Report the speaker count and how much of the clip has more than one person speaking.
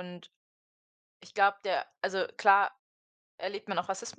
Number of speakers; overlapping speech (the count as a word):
one, no overlap